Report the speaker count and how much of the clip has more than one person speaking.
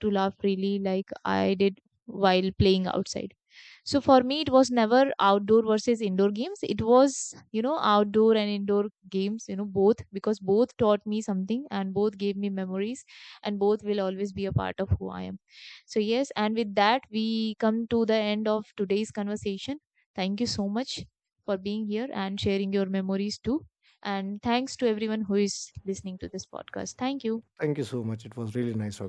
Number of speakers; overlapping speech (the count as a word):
two, no overlap